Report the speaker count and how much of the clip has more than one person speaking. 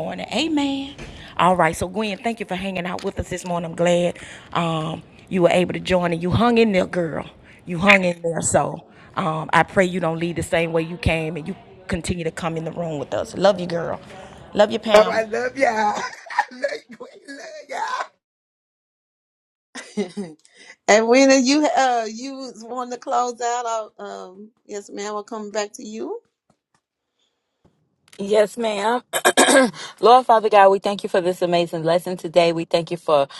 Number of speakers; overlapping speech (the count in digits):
4, about 1%